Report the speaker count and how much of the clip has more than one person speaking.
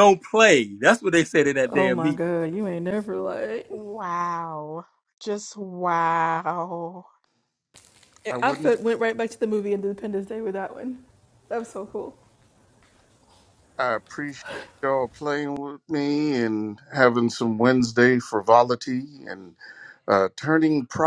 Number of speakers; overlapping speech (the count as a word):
four, about 4%